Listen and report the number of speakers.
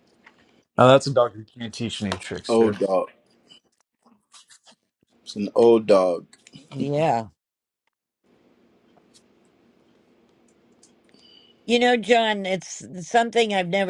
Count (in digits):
3